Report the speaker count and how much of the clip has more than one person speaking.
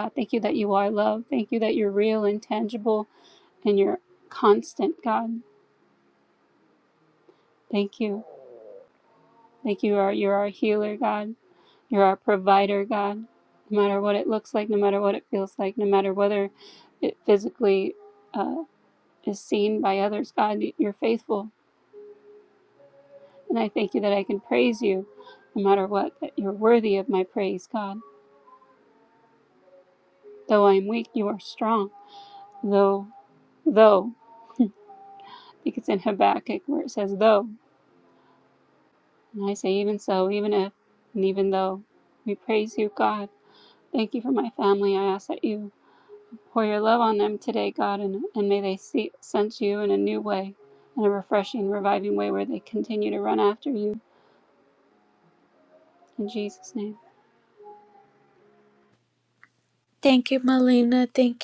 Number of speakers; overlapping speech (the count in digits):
2, no overlap